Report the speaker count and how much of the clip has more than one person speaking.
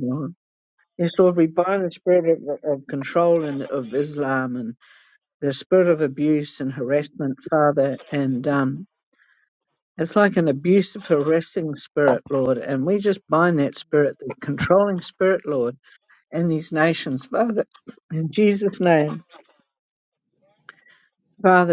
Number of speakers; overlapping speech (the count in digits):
1, no overlap